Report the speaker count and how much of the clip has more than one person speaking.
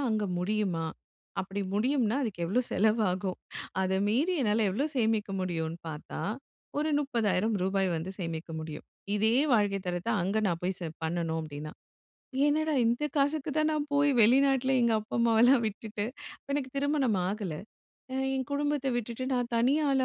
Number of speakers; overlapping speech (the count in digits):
1, no overlap